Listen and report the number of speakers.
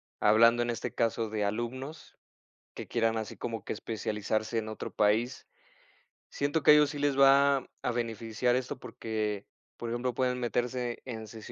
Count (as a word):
one